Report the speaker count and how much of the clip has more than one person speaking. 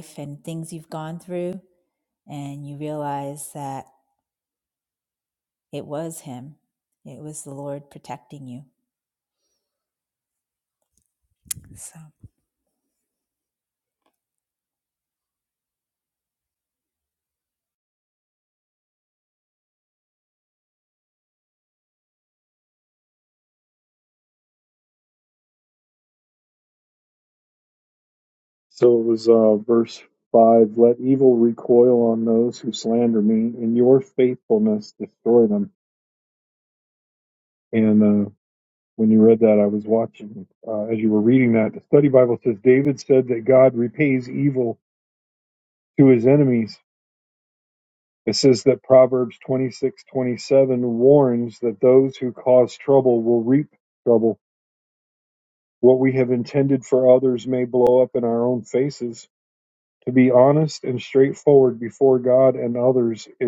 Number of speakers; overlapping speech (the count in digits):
2, no overlap